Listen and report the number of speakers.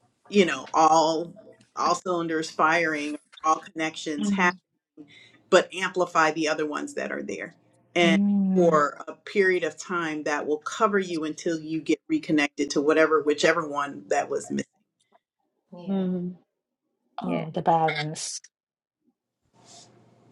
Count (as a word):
three